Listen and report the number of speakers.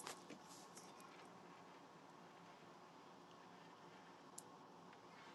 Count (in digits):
0